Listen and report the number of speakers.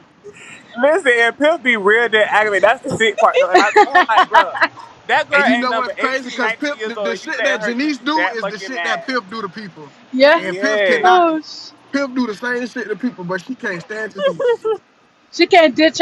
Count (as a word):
three